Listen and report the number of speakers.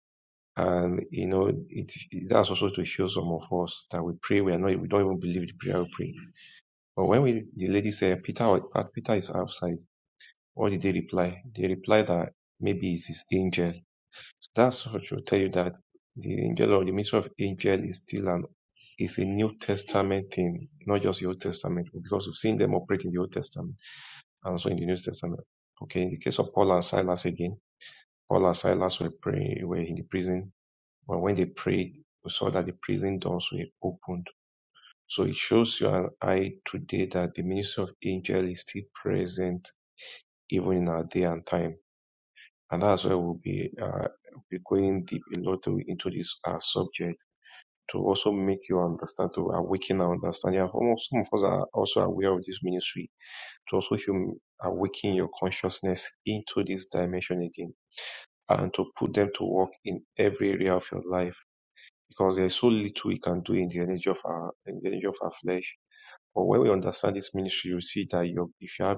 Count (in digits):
1